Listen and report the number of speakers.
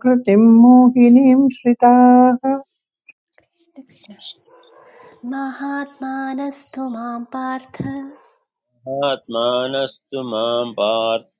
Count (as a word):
three